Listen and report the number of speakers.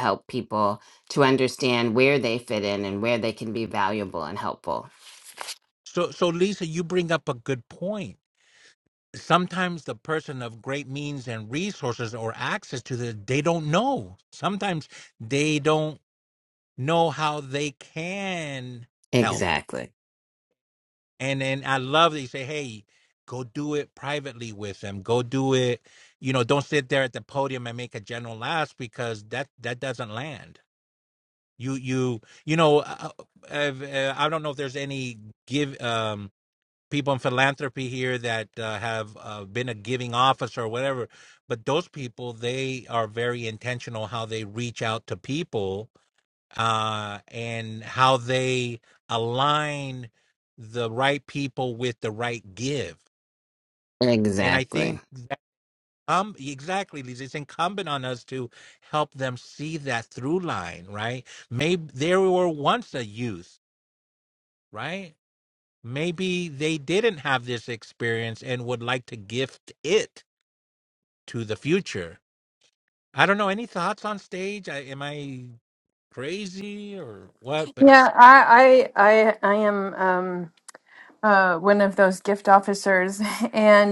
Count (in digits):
3